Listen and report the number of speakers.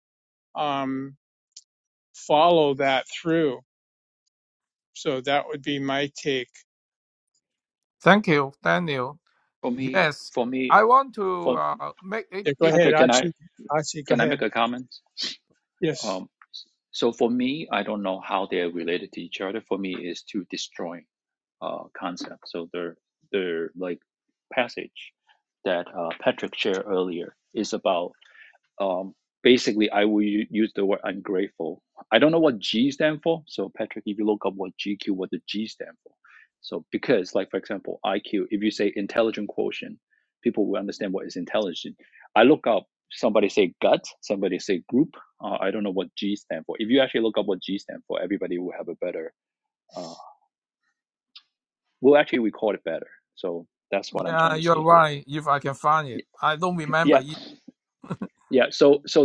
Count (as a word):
three